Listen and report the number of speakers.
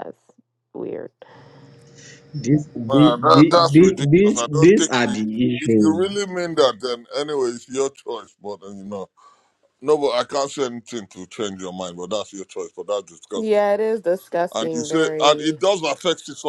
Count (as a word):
three